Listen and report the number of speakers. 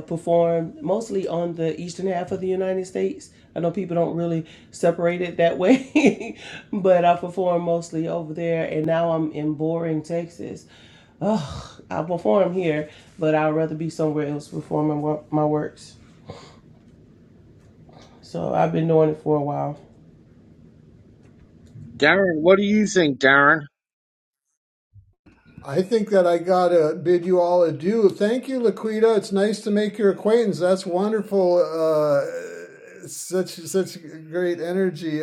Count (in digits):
3